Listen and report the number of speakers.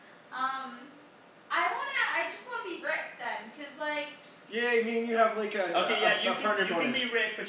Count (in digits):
3